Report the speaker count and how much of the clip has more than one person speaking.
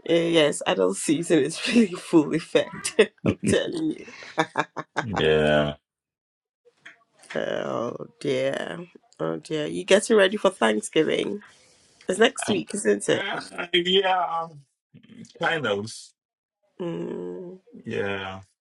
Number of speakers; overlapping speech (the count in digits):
2, about 1%